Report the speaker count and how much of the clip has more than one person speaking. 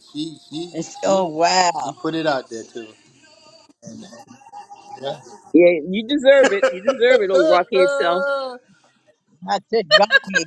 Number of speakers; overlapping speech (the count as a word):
three, about 5%